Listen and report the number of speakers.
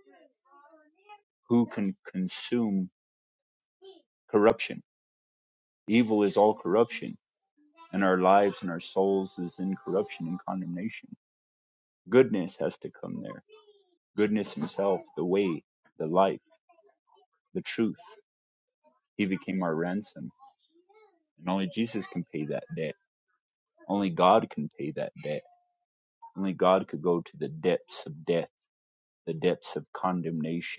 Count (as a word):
one